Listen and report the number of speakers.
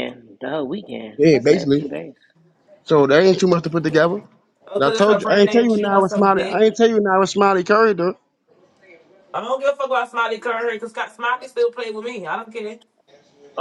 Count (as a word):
three